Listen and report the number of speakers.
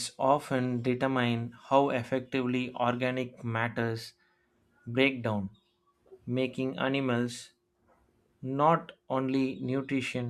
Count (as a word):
one